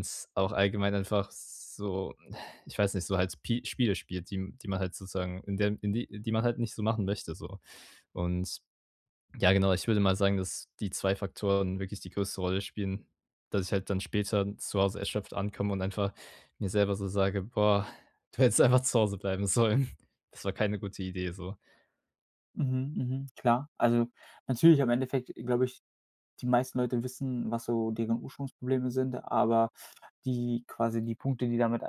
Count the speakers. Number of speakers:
2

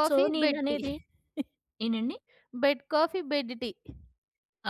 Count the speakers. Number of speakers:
2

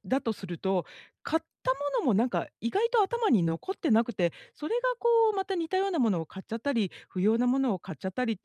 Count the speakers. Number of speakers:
1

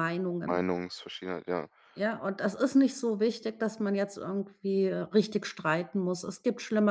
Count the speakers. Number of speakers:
2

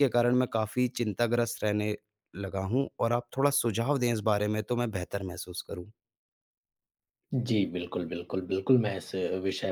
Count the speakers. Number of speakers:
2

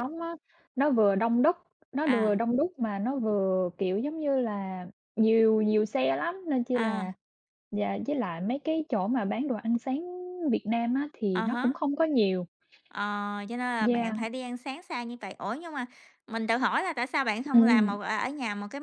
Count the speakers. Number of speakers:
2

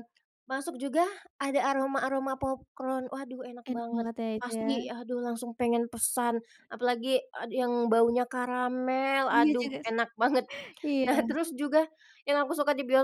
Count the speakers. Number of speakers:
2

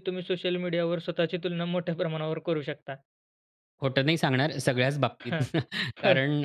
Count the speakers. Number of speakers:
2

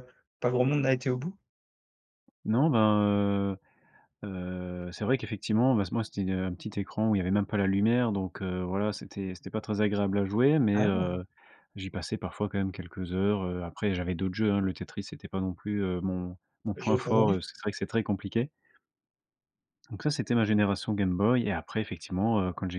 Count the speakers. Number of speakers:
2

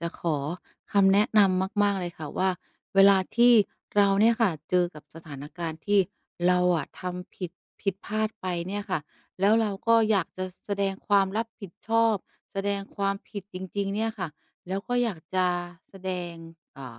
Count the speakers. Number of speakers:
1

